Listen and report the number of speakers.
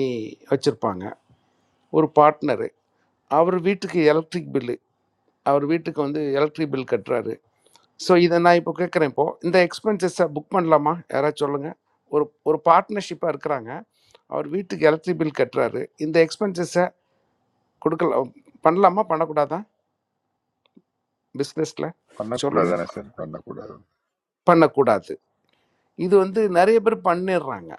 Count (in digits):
2